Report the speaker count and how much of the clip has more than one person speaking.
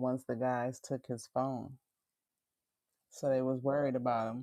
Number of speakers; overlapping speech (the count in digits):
1, no overlap